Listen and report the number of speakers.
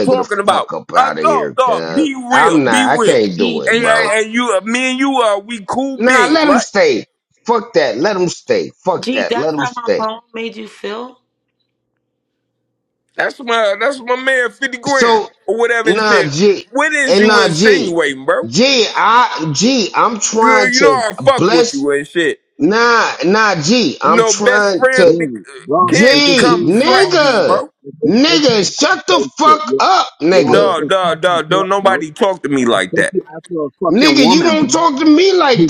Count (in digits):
4